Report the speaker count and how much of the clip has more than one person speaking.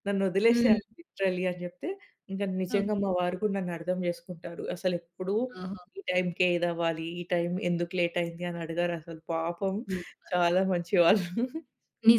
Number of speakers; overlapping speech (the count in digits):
2, about 6%